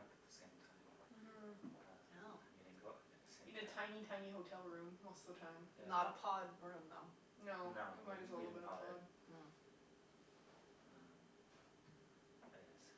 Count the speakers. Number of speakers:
3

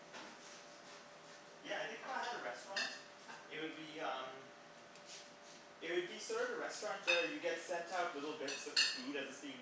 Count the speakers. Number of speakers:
1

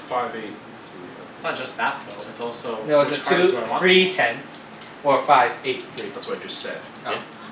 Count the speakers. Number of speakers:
3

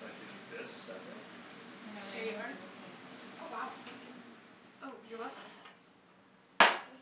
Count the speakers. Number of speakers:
3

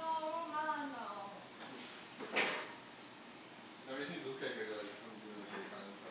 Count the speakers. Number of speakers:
2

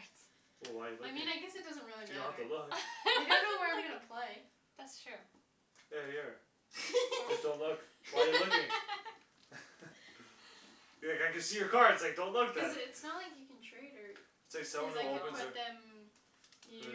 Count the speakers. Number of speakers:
3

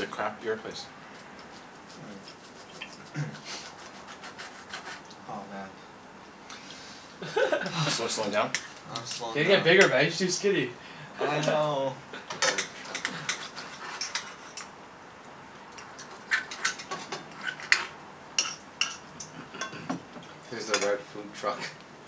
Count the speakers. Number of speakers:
4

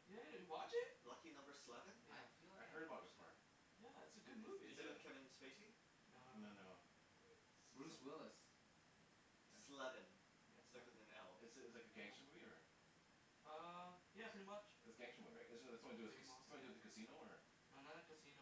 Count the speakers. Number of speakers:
4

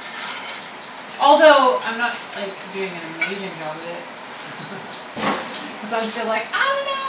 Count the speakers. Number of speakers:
1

